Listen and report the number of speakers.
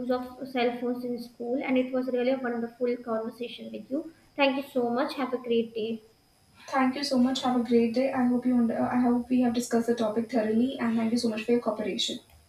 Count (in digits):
2